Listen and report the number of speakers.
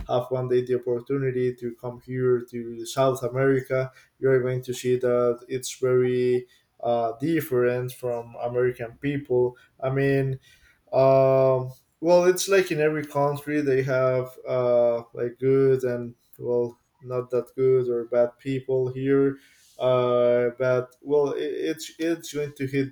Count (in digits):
1